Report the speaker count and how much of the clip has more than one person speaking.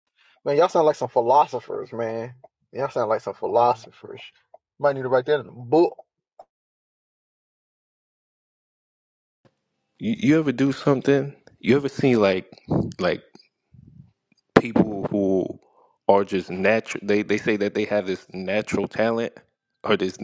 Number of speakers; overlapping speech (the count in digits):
2, no overlap